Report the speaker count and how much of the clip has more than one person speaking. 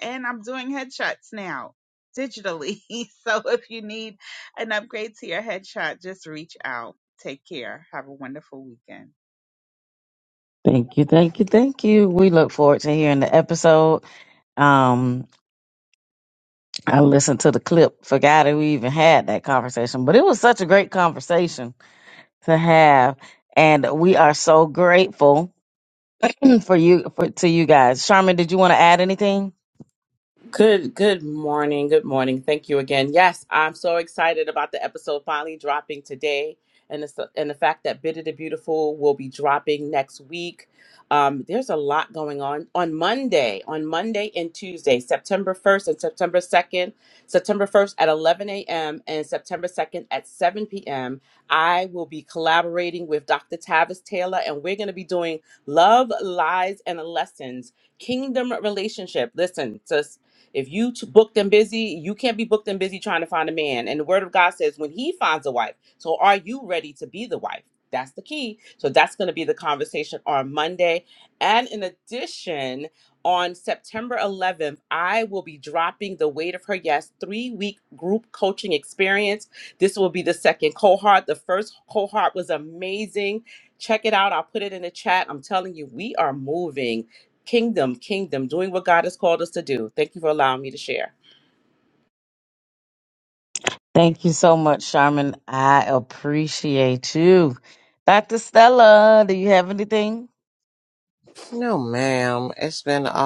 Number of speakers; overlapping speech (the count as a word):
four, no overlap